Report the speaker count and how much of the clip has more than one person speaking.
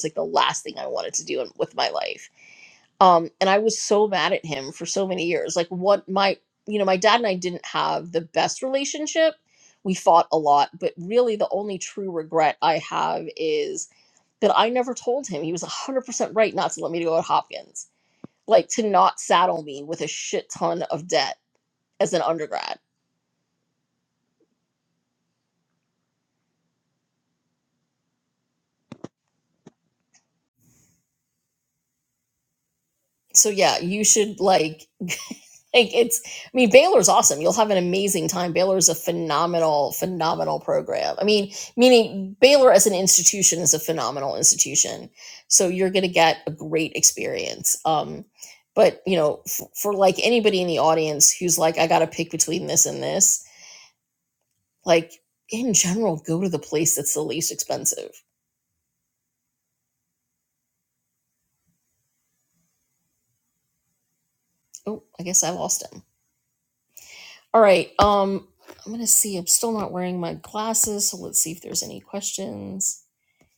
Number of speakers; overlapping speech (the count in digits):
1, no overlap